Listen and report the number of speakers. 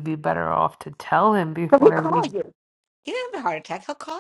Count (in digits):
2